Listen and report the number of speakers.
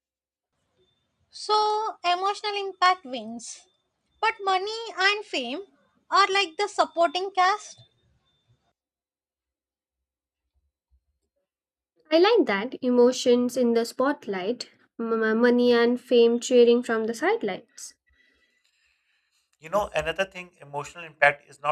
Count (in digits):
3